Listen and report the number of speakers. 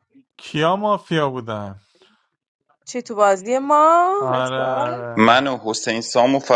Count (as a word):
three